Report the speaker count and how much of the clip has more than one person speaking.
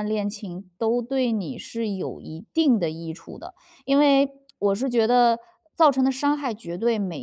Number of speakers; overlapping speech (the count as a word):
one, no overlap